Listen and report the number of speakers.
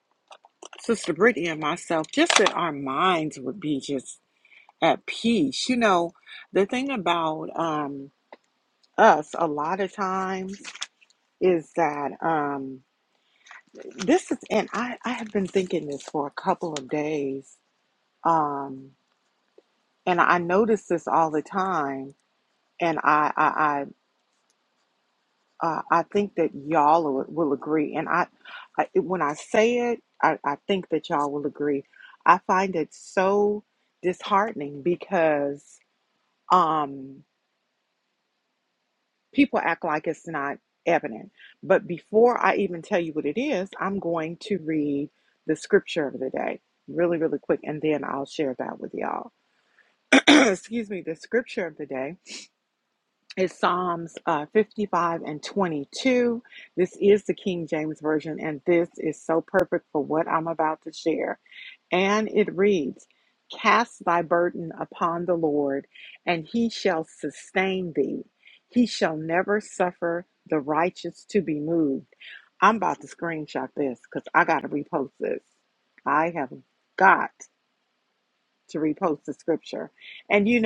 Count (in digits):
1